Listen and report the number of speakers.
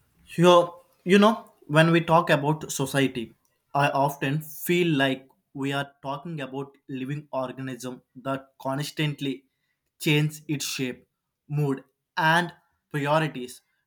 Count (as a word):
one